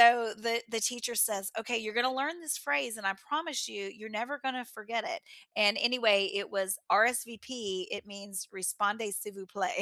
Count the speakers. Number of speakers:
1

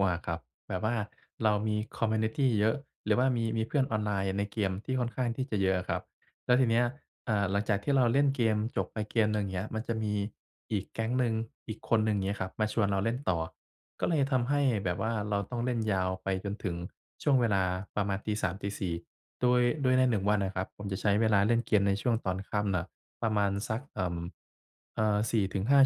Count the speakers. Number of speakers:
1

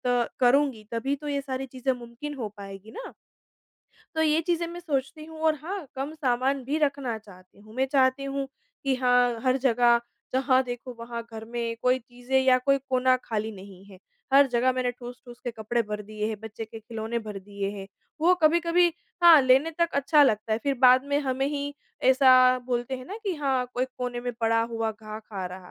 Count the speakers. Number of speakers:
1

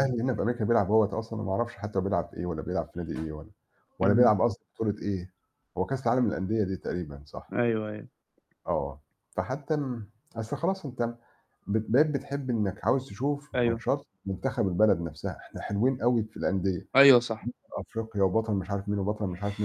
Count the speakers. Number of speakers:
2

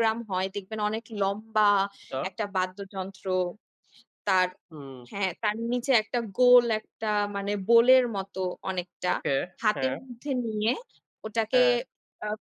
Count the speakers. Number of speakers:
2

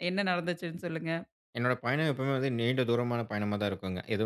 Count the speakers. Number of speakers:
2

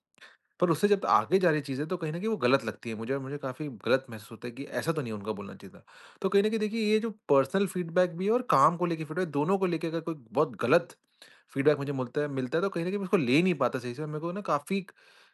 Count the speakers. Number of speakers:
1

